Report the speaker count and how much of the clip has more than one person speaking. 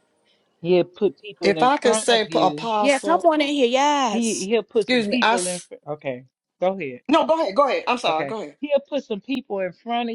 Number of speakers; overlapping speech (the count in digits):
3, about 28%